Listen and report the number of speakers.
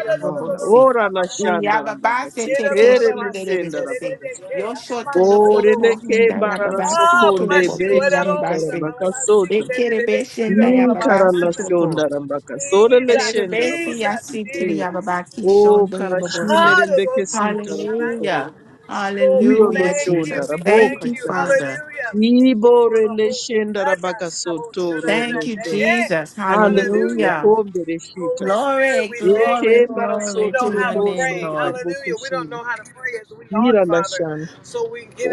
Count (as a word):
three